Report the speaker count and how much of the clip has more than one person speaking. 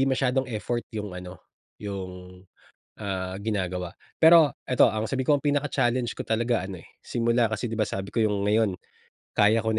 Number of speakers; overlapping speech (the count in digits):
1, no overlap